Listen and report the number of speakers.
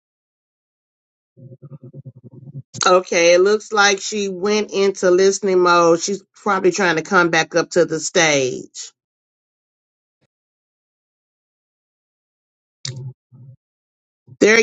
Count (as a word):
one